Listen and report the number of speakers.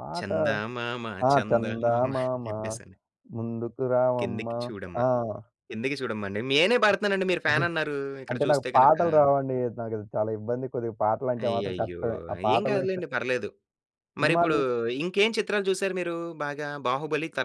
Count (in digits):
2